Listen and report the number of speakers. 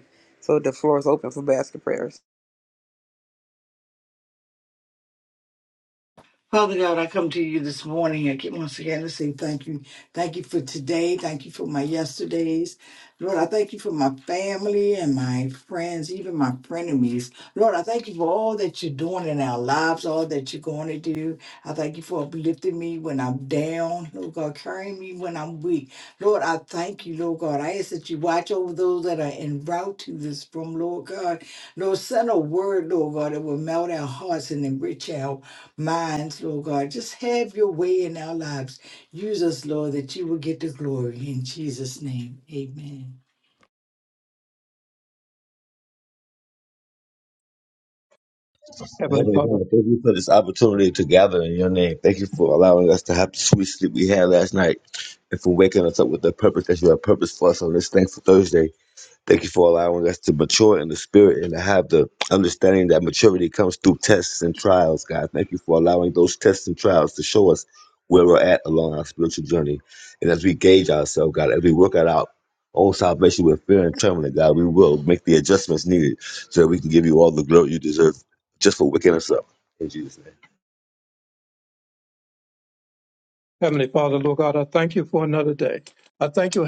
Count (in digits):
4